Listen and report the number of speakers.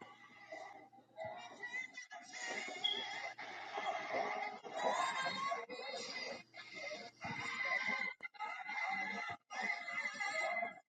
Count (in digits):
0